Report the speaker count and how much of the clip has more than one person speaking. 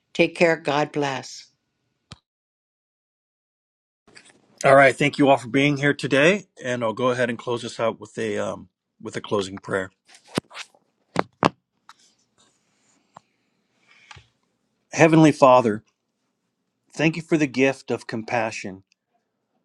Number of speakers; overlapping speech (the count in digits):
2, no overlap